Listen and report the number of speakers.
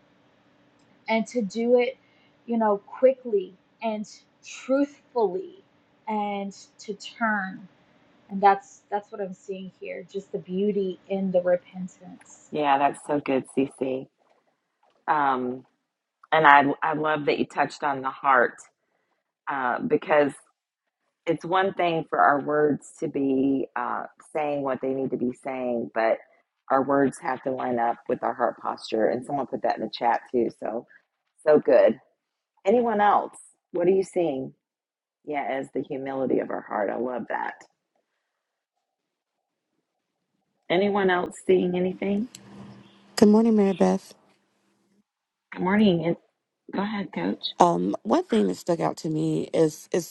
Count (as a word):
three